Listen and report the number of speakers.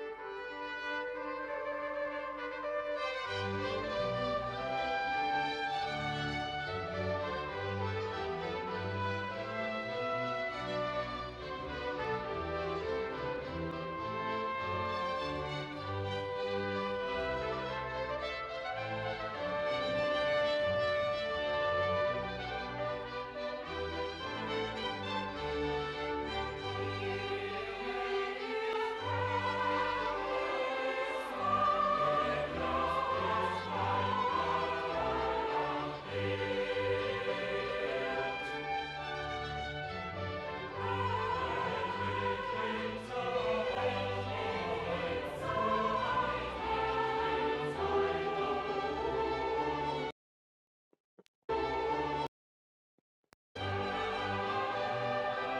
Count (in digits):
0